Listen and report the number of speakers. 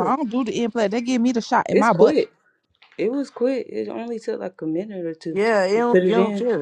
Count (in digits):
3